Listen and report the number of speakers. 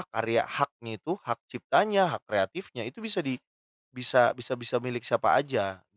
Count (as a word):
one